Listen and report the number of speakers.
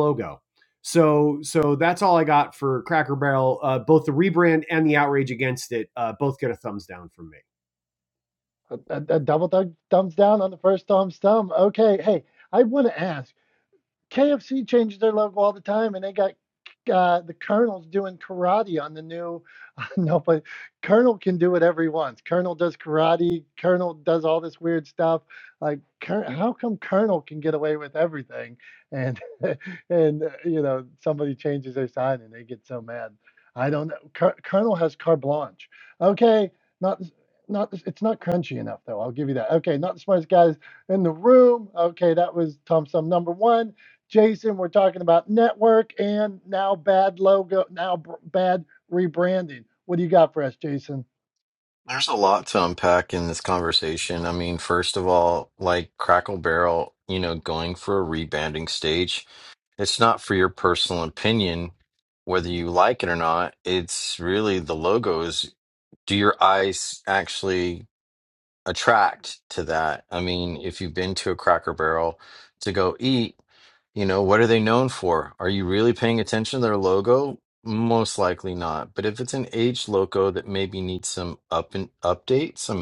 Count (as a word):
three